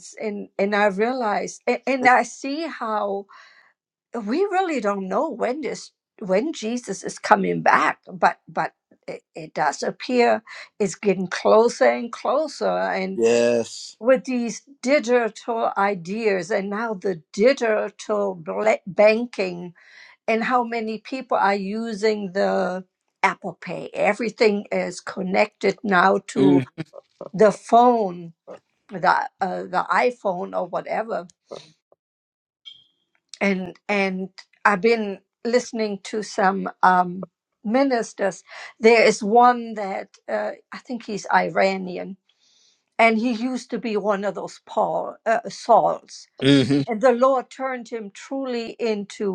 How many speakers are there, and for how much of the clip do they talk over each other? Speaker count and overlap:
two, about 1%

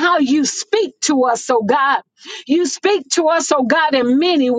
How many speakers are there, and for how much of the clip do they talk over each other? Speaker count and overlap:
one, no overlap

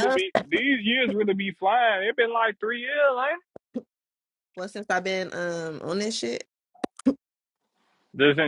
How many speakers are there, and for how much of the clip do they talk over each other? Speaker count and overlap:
two, about 3%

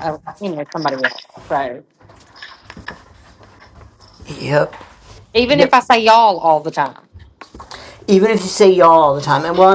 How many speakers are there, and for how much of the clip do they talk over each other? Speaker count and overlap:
two, about 2%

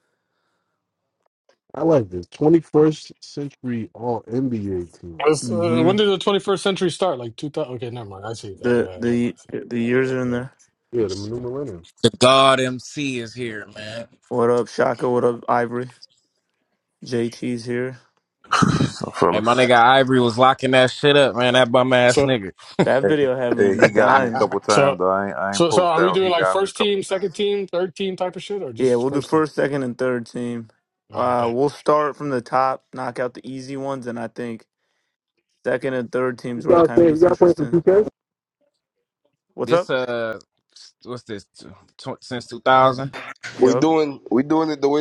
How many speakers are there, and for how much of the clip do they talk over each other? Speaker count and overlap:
six, about 16%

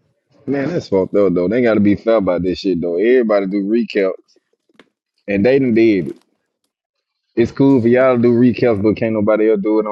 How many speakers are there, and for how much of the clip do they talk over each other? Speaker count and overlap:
one, no overlap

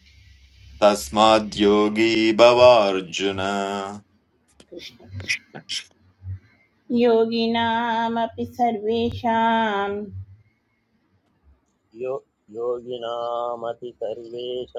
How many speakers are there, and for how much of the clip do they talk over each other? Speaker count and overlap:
three, no overlap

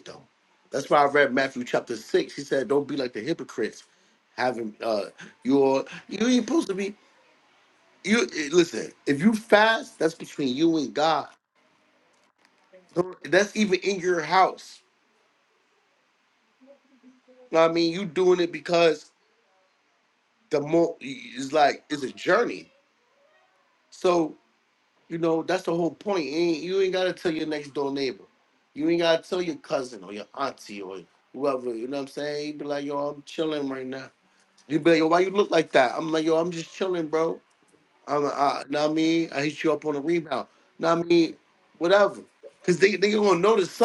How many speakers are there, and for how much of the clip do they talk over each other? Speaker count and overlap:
one, no overlap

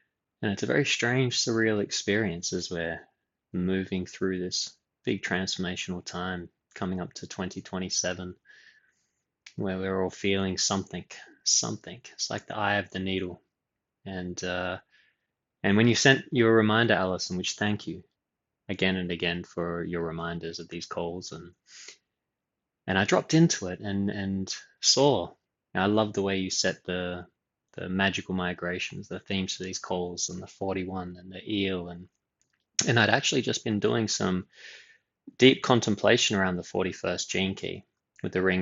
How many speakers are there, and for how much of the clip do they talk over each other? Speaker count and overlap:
one, no overlap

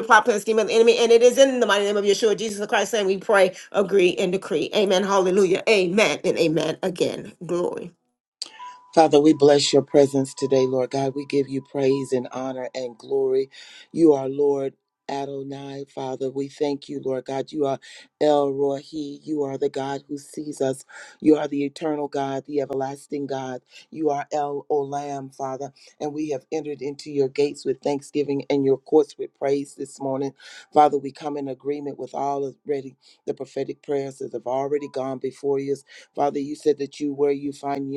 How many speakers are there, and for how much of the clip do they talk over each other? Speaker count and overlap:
two, no overlap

